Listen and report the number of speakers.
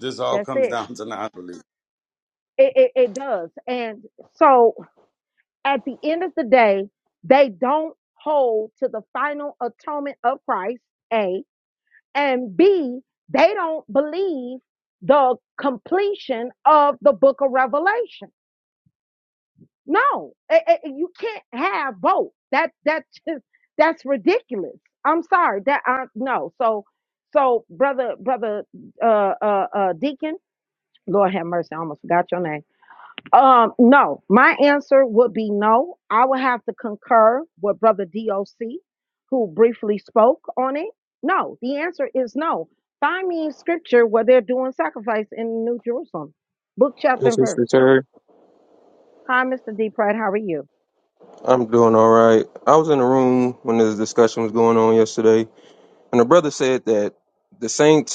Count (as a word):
three